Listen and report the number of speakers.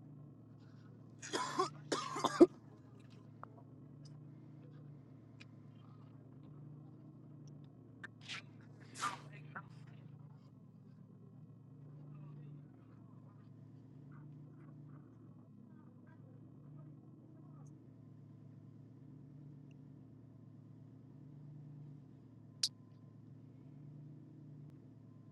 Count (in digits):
0